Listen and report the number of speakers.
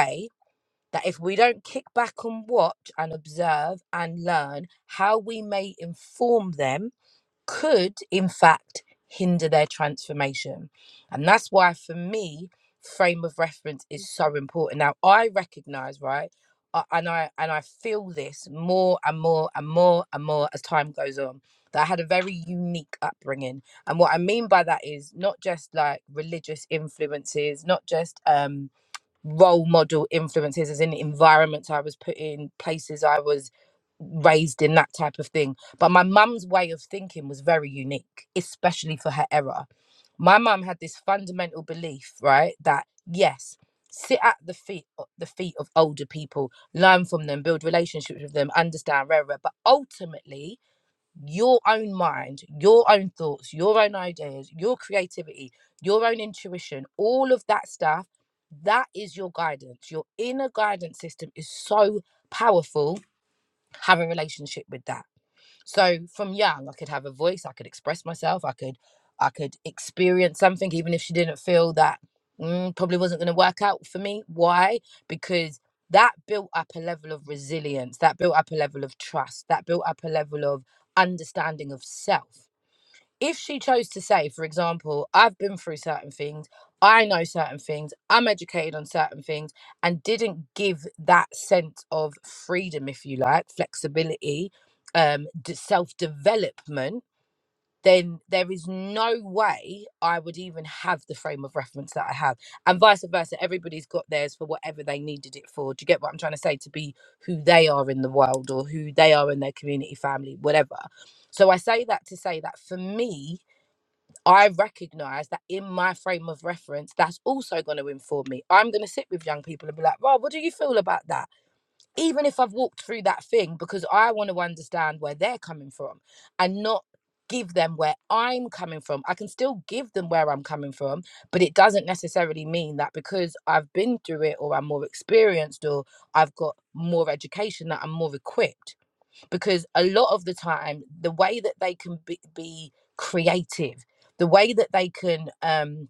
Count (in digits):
1